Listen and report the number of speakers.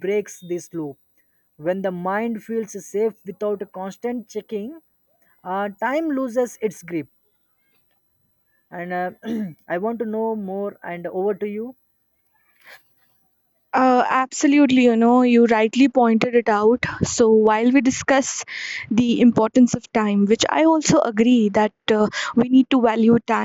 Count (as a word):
two